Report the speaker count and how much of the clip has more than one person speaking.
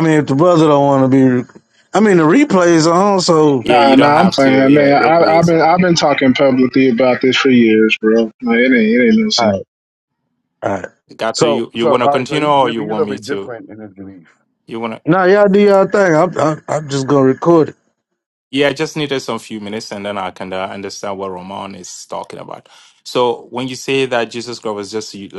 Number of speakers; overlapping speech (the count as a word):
four, about 17%